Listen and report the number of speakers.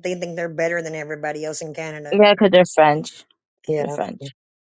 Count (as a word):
two